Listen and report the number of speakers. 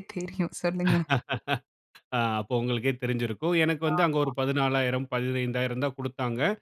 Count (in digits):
2